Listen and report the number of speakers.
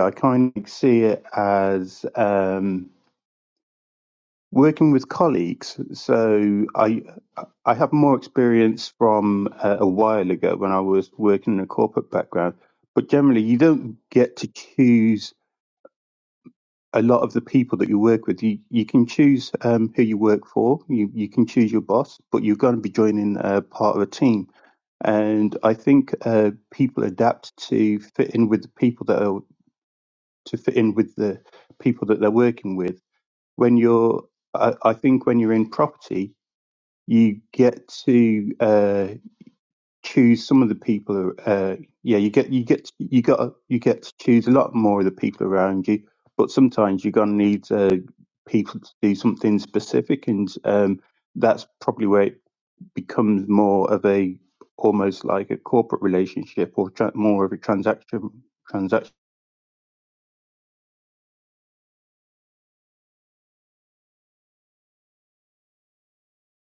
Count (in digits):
1